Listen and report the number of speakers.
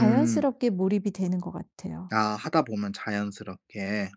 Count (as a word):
two